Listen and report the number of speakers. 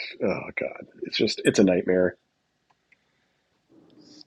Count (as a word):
one